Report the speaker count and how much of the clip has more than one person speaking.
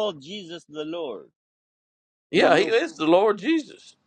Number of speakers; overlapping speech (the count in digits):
2, about 9%